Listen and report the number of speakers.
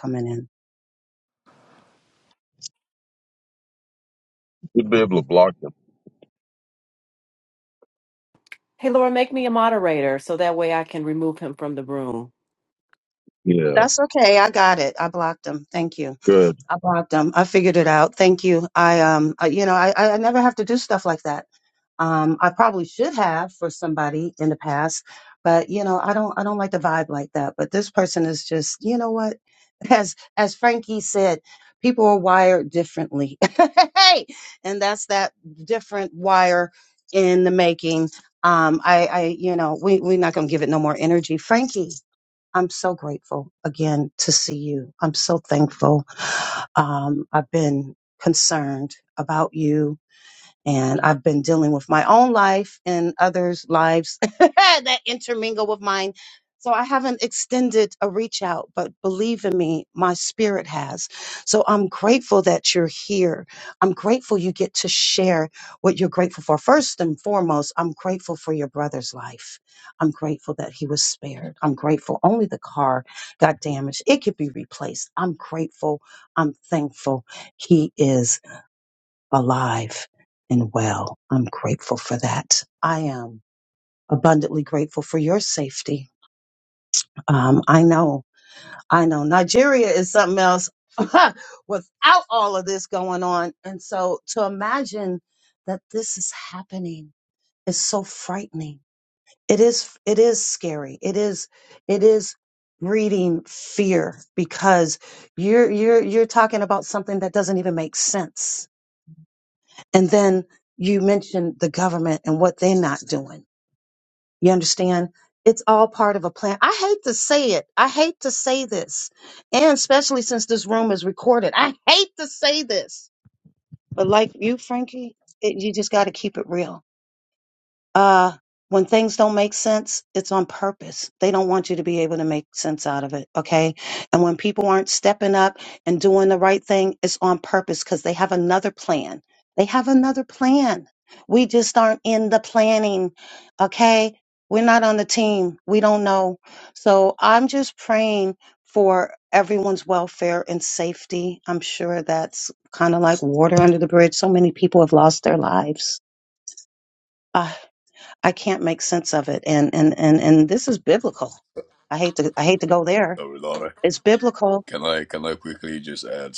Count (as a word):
four